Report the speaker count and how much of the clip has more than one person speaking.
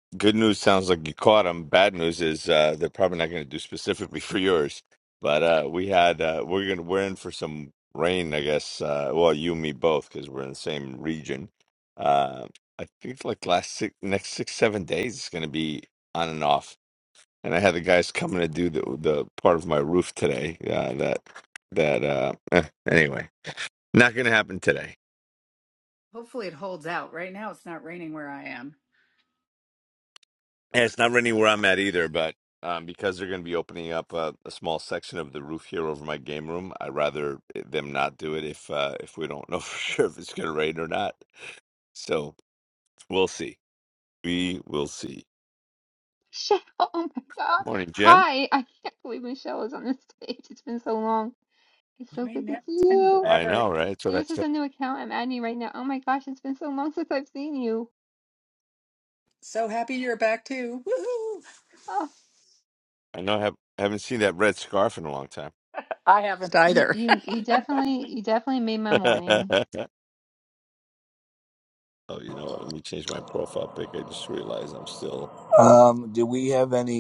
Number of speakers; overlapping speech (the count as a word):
four, about 4%